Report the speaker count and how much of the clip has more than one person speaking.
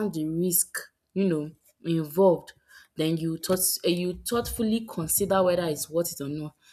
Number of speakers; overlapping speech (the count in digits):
1, no overlap